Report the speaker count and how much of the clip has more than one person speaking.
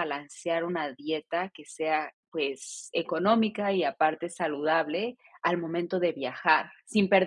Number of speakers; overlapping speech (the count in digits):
1, no overlap